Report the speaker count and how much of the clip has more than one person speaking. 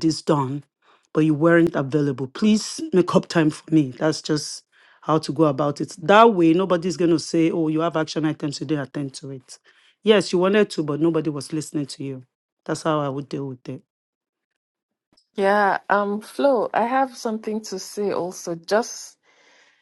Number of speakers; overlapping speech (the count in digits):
2, no overlap